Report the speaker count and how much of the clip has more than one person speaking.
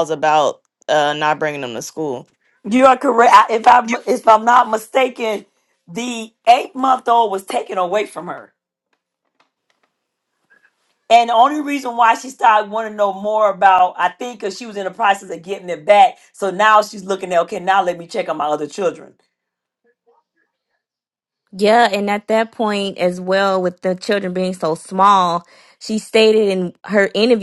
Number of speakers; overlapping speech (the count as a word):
three, no overlap